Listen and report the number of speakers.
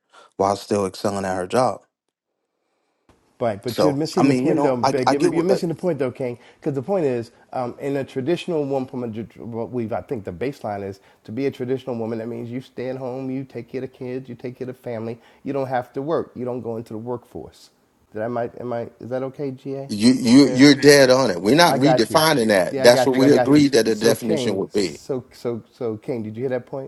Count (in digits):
3